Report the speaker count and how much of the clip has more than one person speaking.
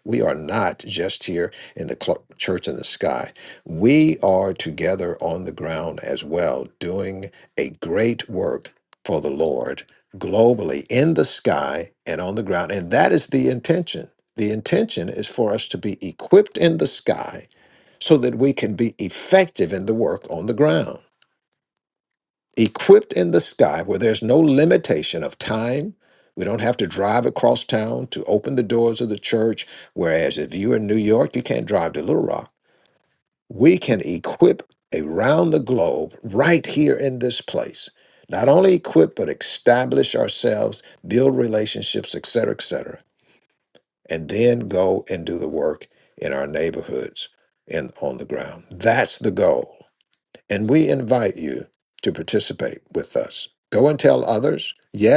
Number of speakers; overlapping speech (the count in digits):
1, no overlap